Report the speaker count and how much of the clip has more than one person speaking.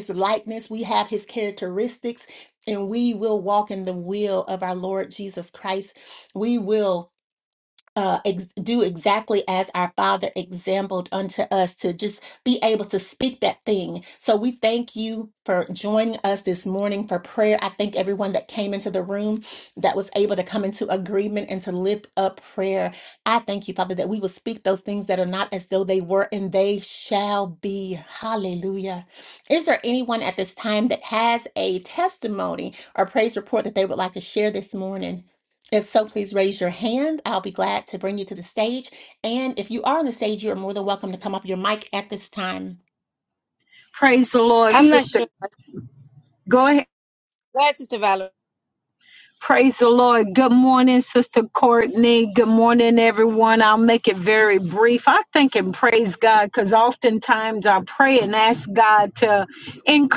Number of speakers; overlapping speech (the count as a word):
three, about 1%